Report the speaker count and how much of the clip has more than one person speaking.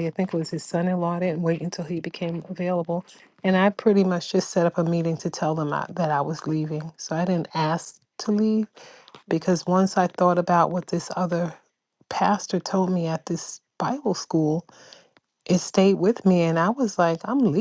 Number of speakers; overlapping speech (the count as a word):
one, no overlap